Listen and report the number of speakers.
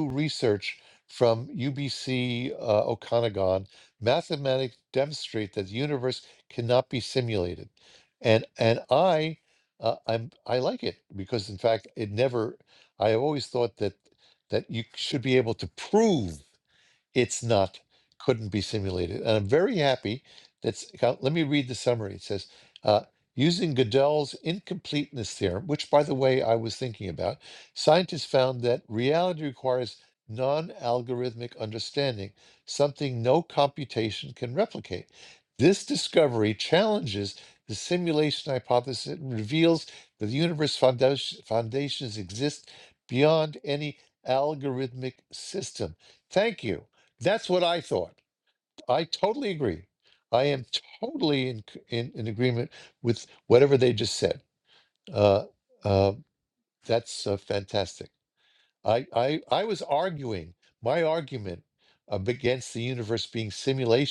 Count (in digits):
1